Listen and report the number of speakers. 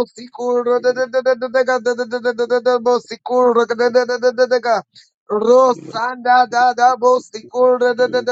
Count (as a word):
one